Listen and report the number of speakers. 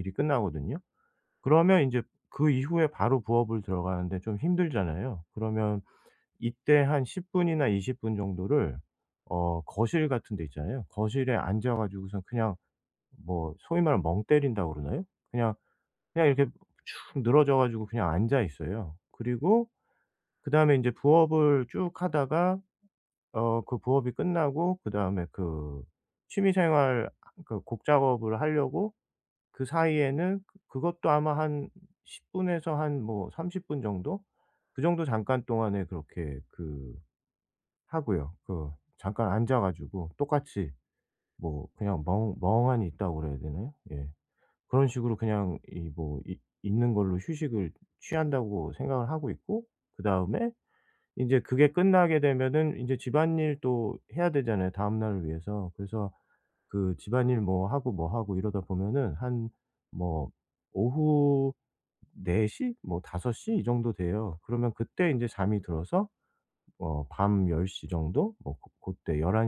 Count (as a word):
one